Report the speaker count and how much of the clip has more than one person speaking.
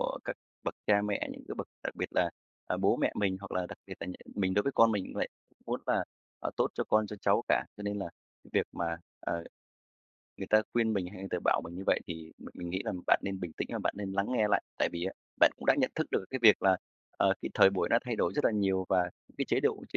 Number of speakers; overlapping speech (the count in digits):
1, no overlap